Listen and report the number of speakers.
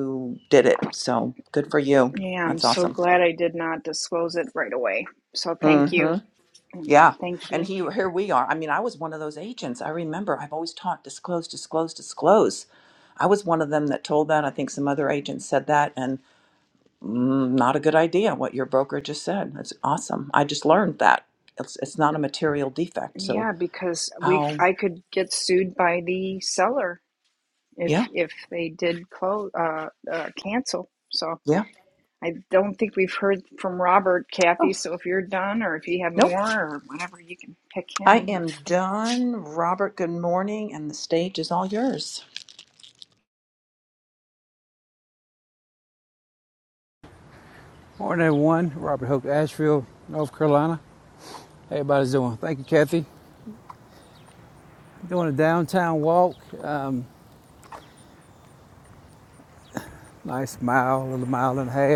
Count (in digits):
3